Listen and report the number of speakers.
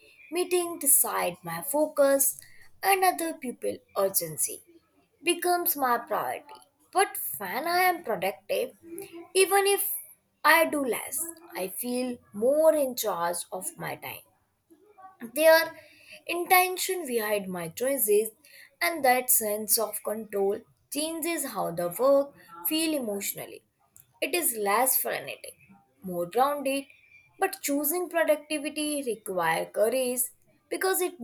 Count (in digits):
1